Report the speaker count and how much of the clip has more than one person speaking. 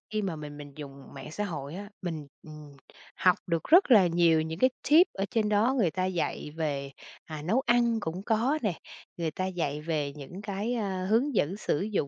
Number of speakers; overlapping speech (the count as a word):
one, no overlap